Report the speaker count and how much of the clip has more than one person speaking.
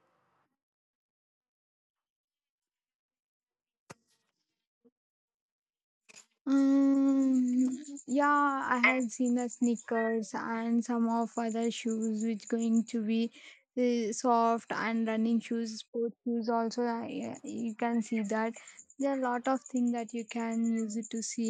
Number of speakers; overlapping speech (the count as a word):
one, no overlap